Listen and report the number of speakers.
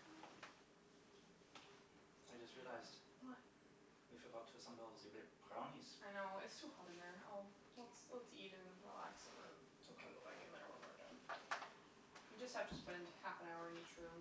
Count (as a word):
two